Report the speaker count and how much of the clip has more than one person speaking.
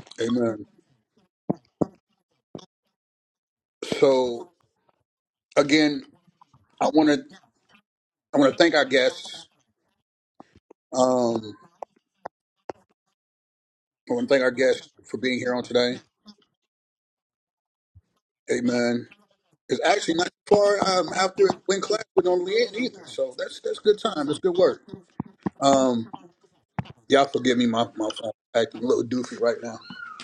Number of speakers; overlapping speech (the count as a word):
one, no overlap